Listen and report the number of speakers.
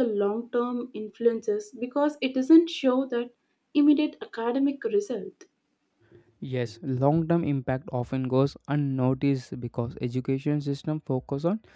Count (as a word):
two